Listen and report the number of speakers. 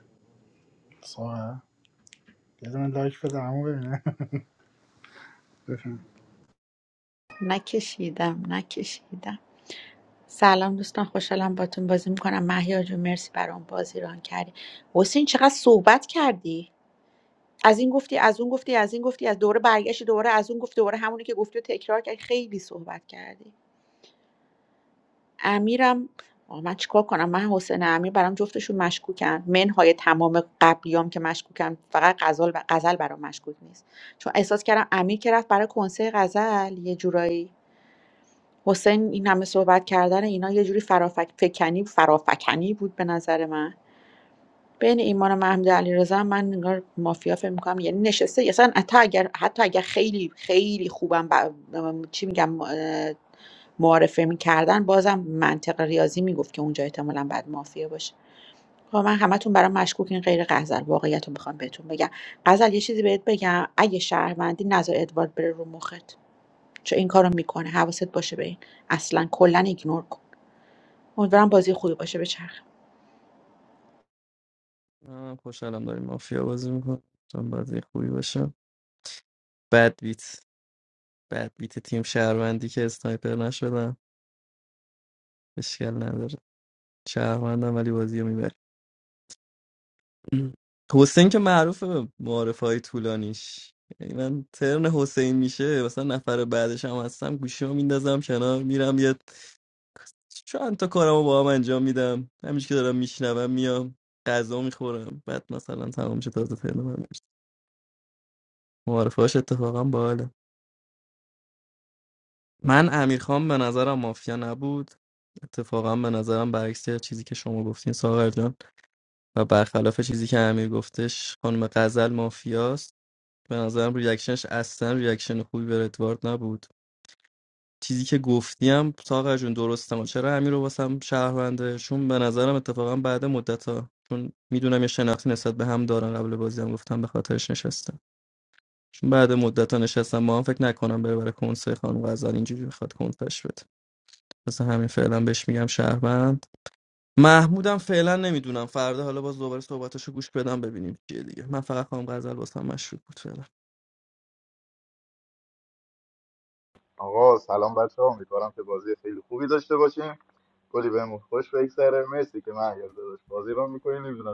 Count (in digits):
4